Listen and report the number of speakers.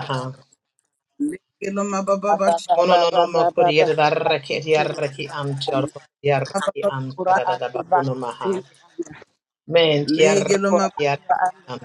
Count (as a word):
three